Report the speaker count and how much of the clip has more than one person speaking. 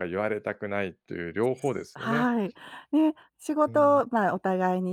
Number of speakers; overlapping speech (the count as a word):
two, about 10%